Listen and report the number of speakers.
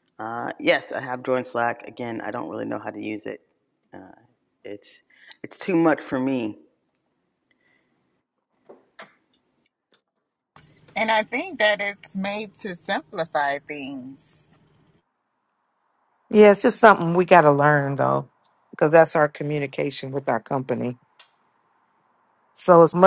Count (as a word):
three